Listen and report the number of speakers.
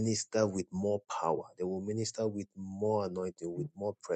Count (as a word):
one